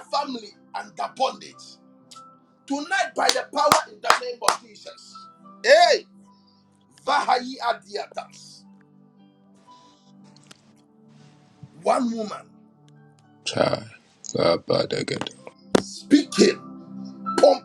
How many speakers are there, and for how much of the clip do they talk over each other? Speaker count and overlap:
two, no overlap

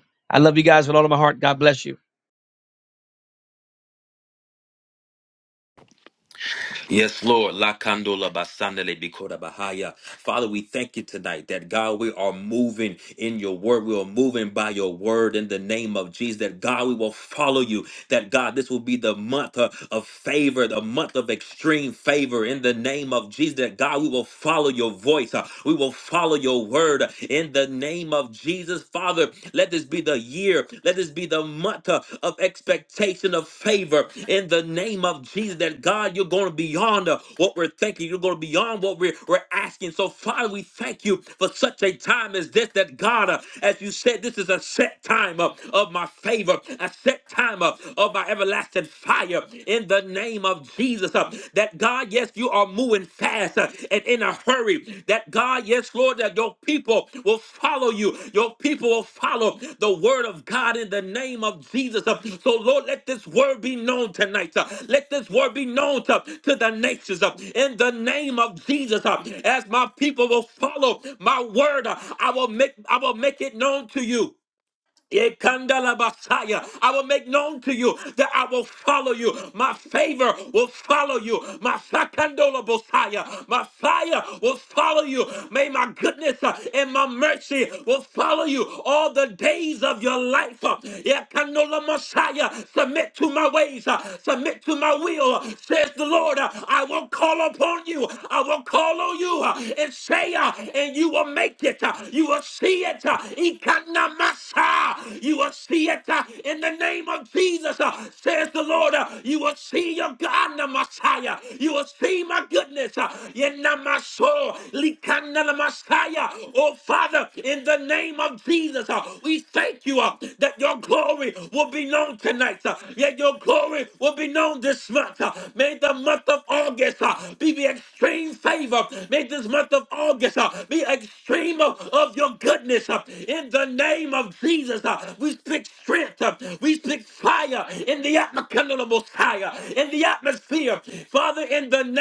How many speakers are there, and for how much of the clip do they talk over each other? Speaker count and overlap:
two, no overlap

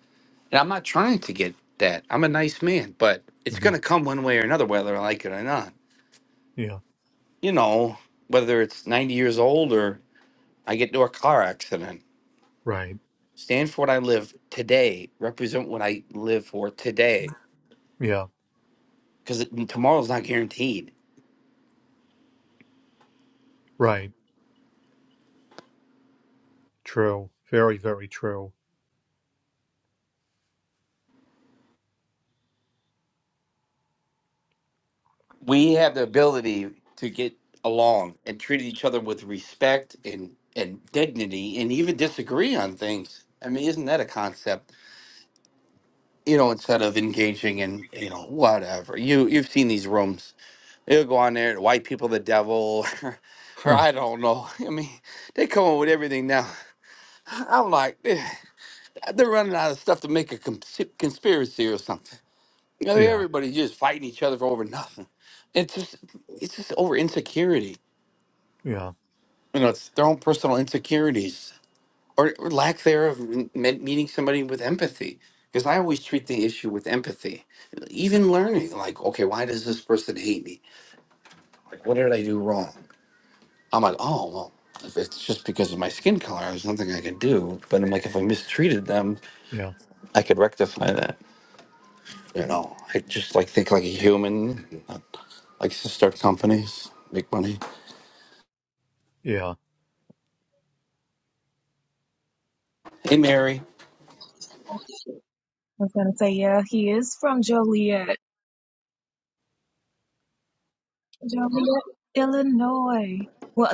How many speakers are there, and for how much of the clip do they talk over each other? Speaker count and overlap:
three, about 1%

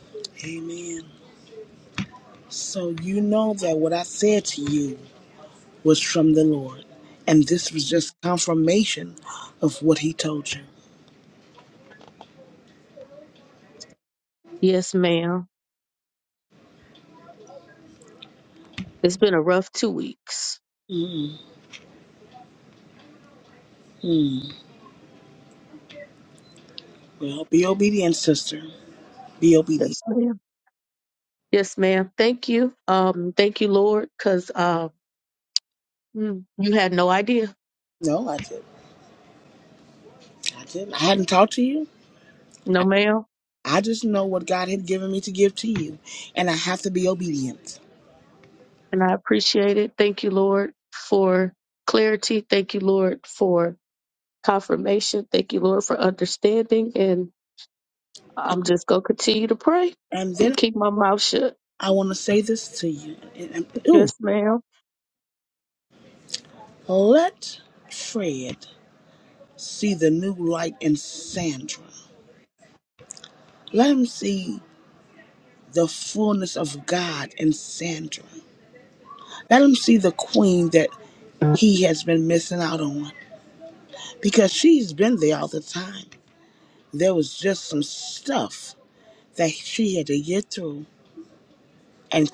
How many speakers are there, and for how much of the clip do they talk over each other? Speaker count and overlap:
two, about 1%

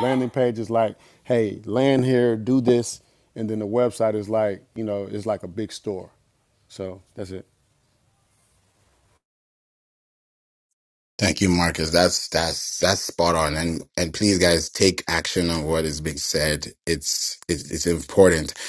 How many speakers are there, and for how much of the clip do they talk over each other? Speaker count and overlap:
two, no overlap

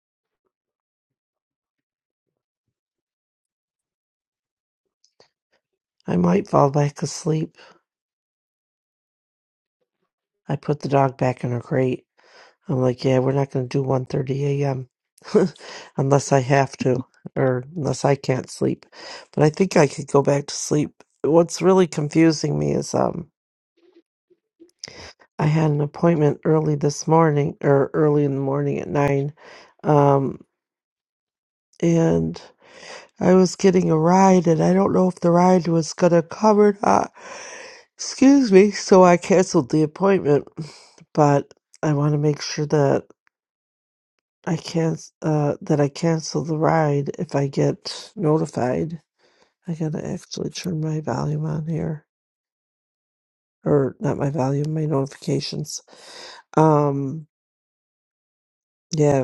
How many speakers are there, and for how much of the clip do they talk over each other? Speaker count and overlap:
one, no overlap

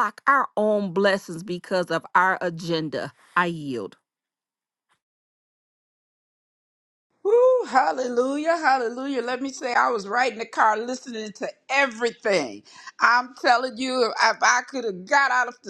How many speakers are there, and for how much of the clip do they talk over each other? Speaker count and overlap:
two, no overlap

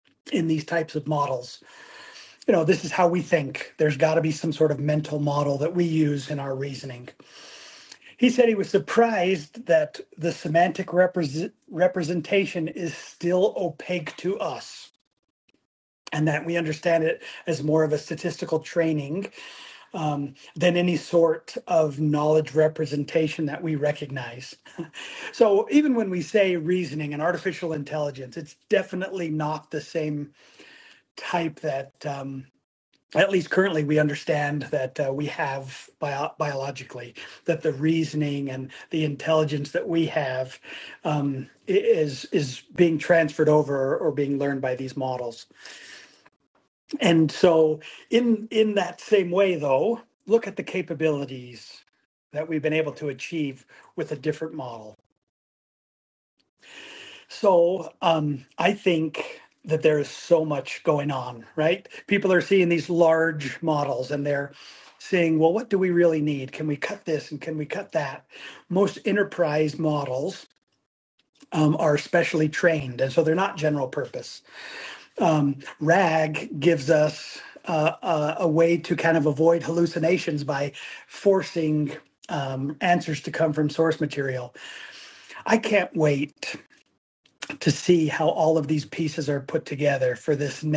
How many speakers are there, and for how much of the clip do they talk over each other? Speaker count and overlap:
one, no overlap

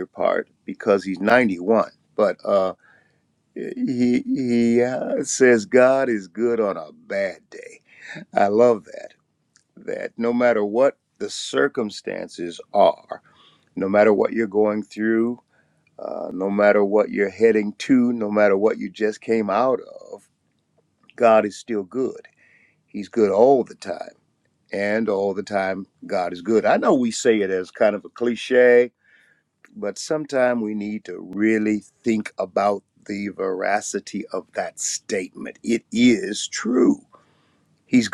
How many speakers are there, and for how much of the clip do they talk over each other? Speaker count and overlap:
one, no overlap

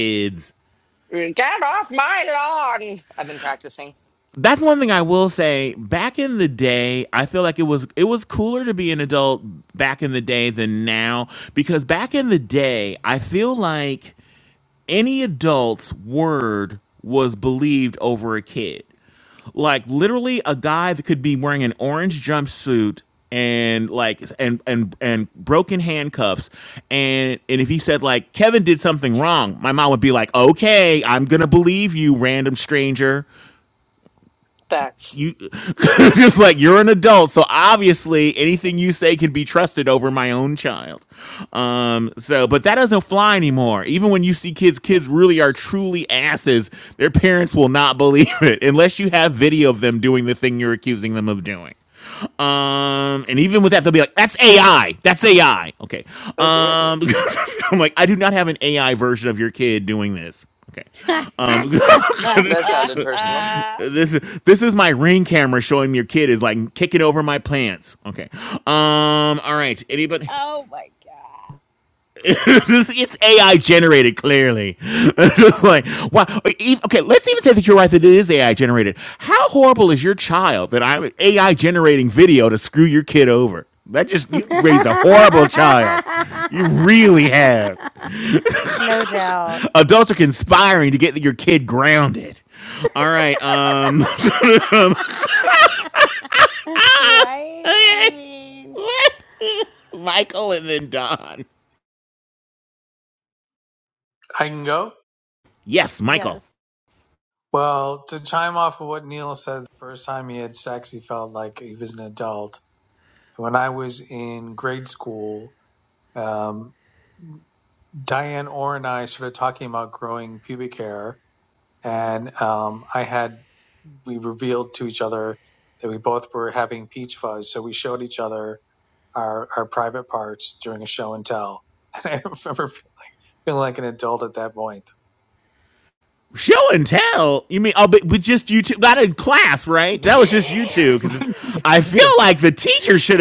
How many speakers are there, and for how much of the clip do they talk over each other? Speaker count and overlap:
five, about 2%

